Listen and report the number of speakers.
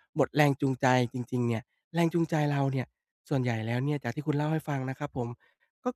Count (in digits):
1